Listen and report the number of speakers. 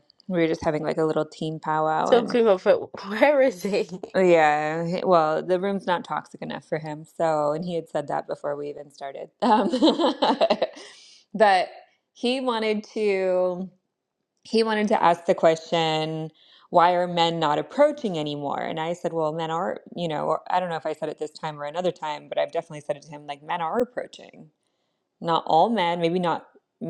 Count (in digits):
2